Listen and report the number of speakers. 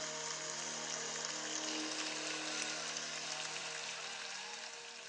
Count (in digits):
0